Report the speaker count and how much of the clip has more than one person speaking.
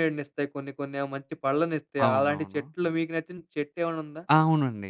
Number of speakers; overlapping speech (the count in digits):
2, about 13%